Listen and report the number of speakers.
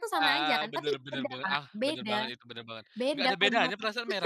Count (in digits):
2